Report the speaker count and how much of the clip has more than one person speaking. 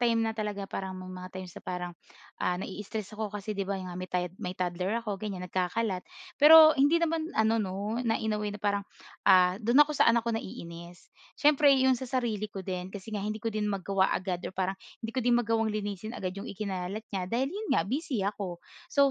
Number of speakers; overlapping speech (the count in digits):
1, no overlap